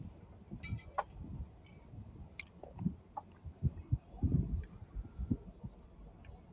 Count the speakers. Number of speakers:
0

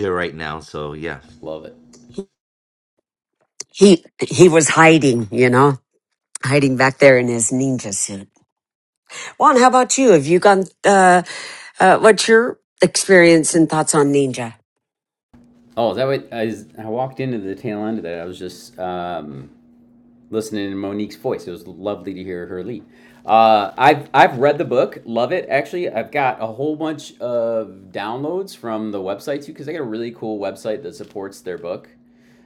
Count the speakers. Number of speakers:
3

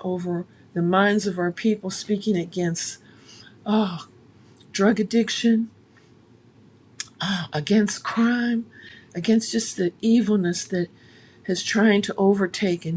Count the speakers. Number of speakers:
1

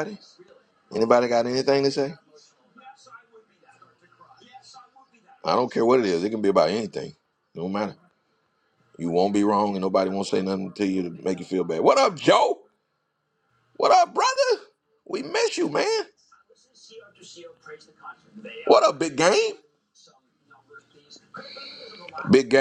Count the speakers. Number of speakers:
1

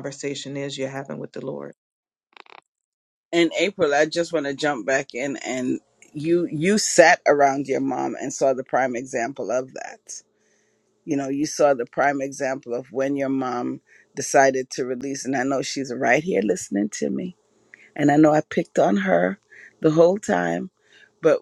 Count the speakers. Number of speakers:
2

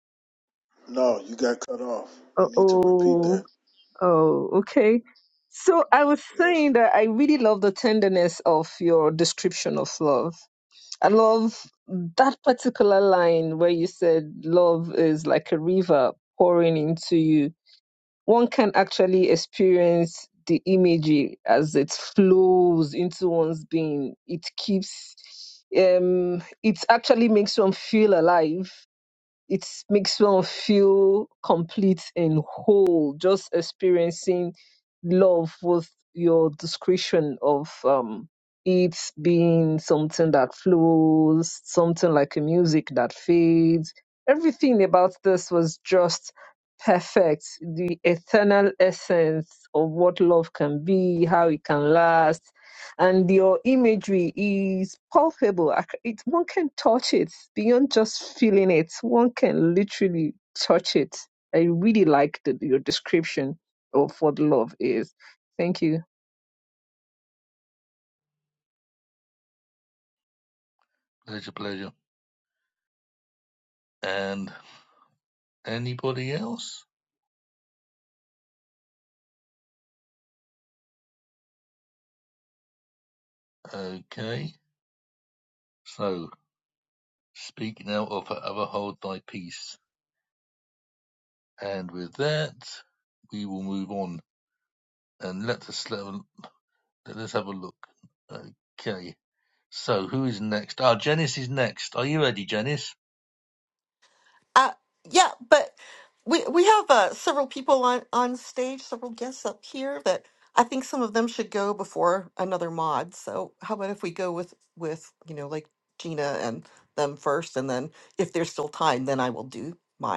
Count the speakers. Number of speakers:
4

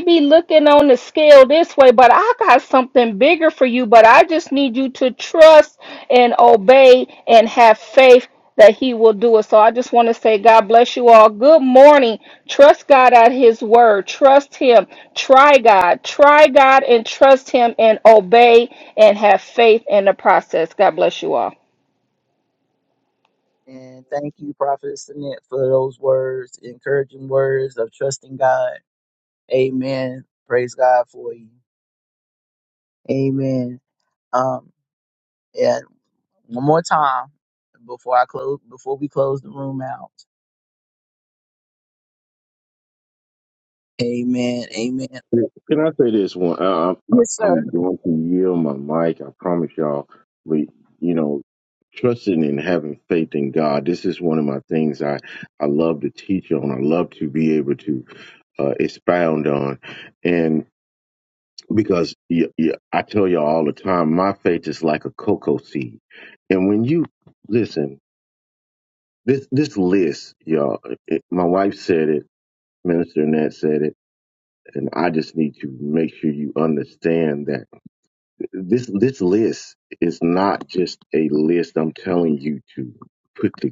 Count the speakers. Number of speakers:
3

